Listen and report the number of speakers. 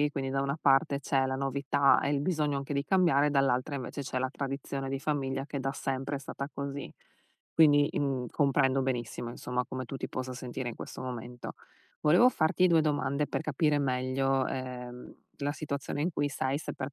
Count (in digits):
1